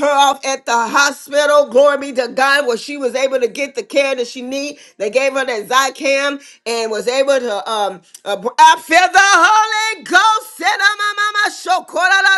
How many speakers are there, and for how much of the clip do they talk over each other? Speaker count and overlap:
one, no overlap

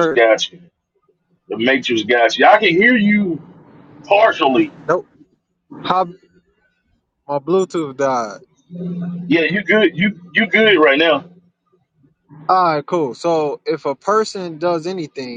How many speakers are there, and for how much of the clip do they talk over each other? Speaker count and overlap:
two, about 1%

